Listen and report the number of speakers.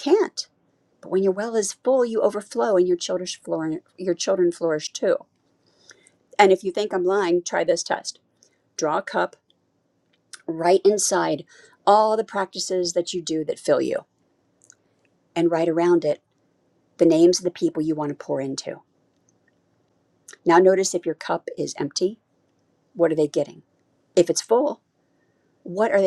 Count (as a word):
one